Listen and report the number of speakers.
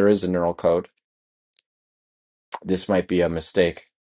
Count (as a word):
one